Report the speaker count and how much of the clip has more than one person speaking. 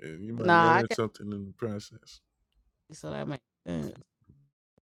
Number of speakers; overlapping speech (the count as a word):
two, about 12%